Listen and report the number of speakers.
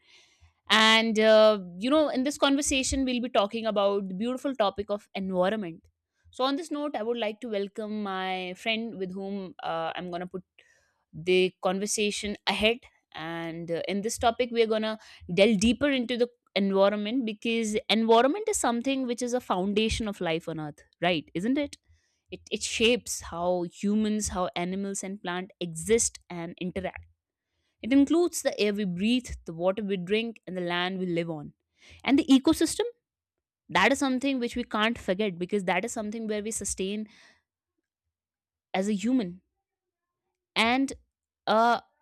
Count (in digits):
1